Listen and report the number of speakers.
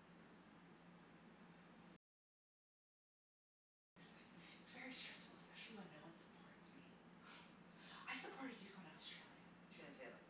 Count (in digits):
1